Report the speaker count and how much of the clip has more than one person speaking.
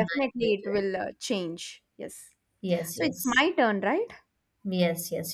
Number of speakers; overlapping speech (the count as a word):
two, about 18%